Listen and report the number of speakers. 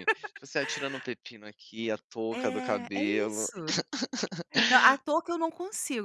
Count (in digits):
2